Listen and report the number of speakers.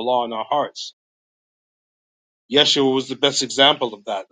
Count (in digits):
1